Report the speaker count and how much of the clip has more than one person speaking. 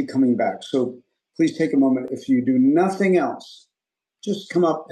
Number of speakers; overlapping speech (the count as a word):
one, no overlap